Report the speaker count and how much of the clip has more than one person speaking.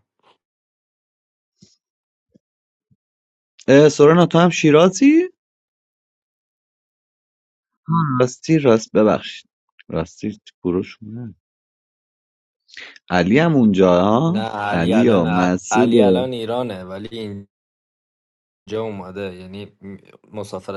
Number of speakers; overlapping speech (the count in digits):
2, about 10%